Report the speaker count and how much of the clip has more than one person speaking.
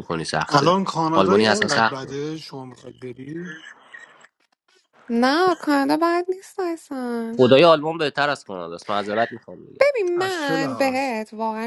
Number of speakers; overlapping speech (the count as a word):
three, about 17%